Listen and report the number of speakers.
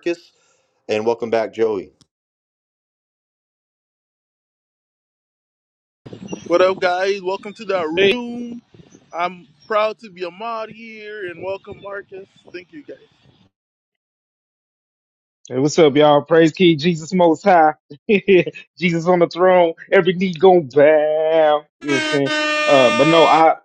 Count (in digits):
3